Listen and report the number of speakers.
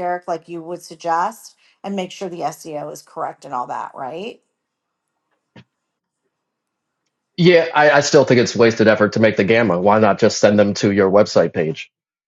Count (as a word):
two